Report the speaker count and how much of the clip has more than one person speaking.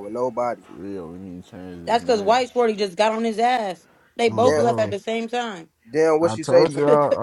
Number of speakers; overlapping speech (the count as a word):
four, about 25%